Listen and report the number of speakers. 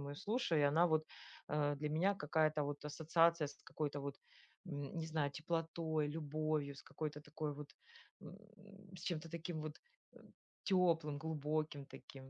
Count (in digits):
1